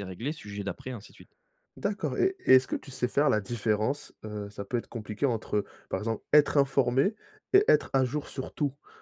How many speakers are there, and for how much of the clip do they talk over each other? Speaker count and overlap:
2, no overlap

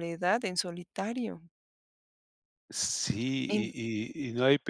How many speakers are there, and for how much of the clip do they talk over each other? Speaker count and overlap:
2, about 5%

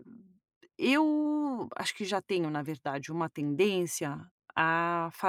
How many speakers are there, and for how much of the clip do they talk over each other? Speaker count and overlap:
1, no overlap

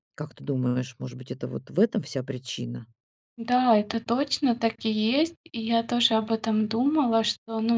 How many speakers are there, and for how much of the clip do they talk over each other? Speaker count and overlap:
2, no overlap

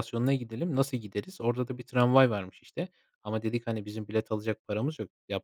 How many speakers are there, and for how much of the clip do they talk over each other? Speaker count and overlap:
1, no overlap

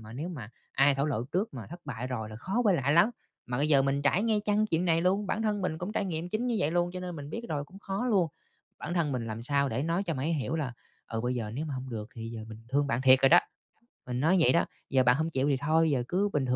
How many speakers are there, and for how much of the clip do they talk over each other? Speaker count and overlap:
1, no overlap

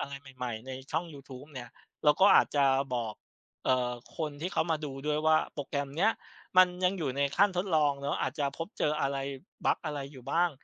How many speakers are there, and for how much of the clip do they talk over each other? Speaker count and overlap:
1, no overlap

